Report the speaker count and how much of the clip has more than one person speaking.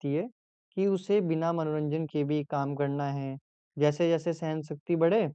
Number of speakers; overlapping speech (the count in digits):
1, no overlap